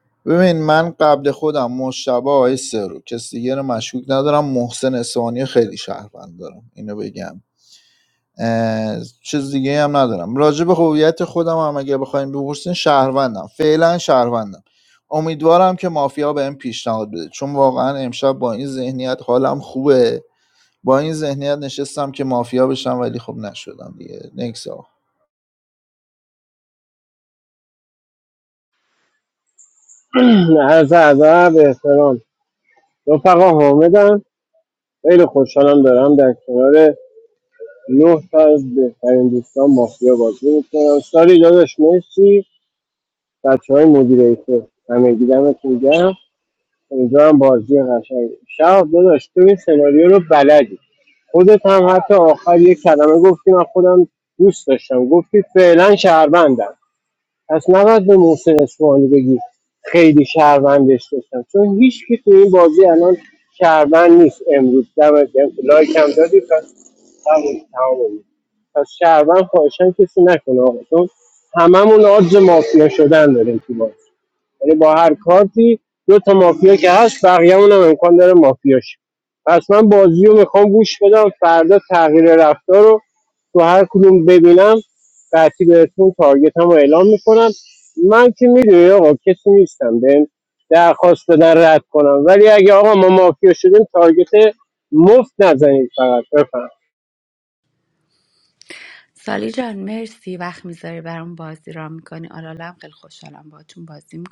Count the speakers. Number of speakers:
3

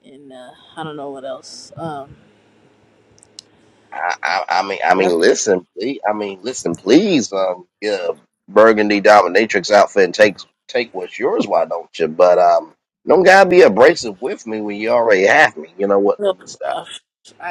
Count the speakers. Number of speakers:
2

